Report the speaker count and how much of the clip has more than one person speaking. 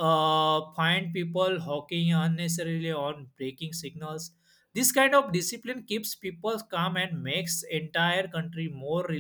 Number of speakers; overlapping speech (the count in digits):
1, no overlap